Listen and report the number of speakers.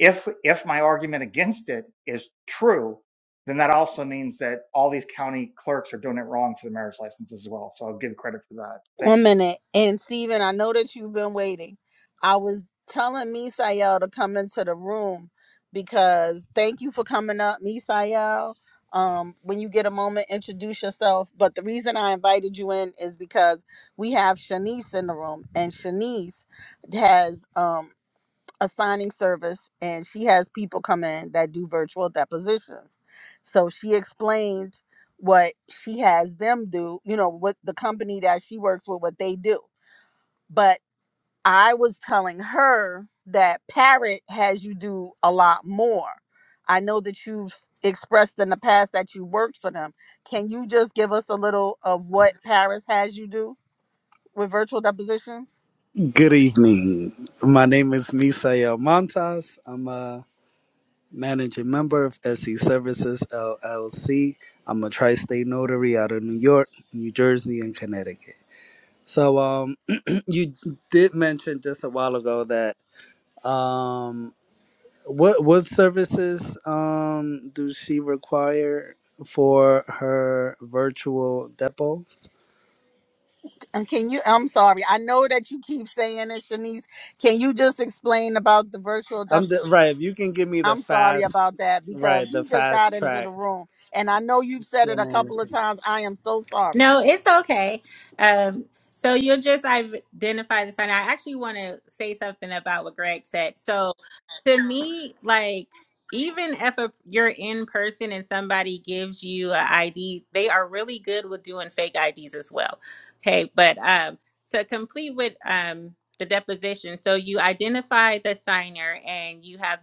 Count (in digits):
4